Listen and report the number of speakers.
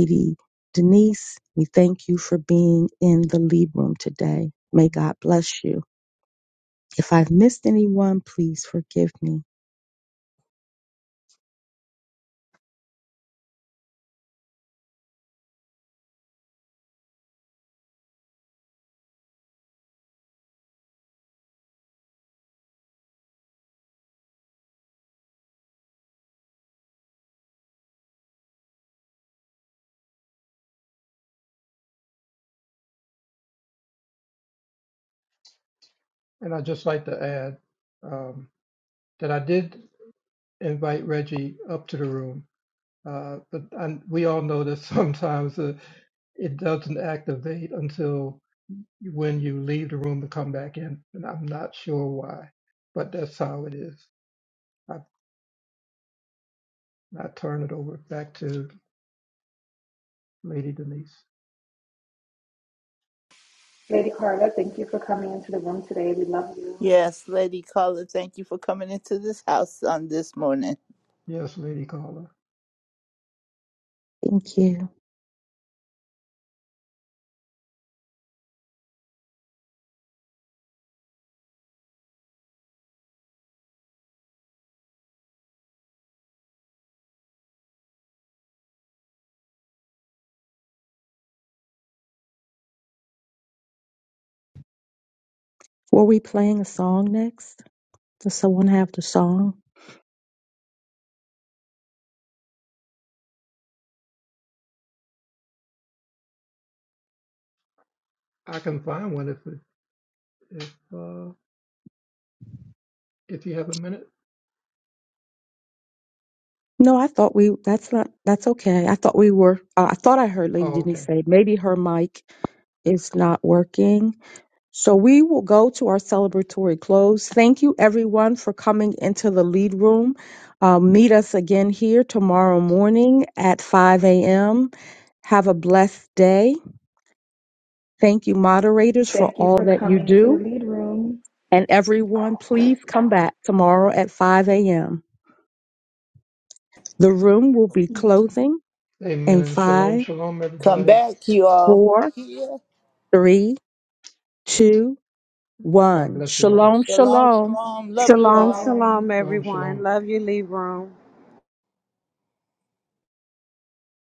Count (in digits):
5